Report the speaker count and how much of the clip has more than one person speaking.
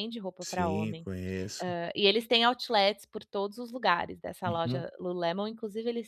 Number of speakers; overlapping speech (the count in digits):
2, about 16%